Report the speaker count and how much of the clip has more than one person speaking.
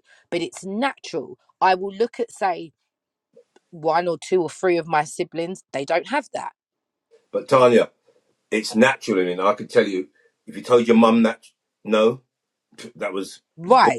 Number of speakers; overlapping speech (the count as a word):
two, no overlap